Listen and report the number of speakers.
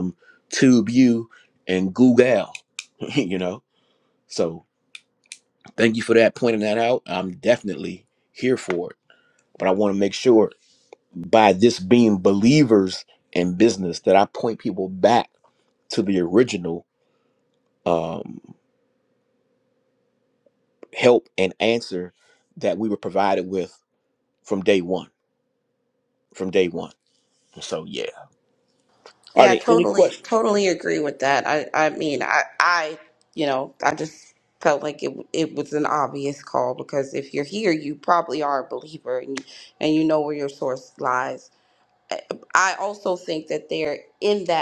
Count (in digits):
2